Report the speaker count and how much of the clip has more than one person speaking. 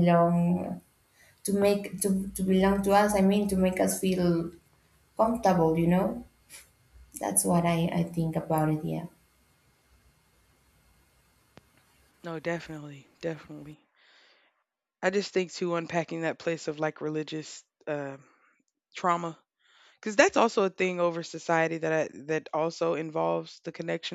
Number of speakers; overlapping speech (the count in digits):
2, no overlap